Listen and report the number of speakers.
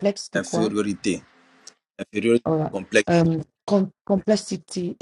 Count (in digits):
2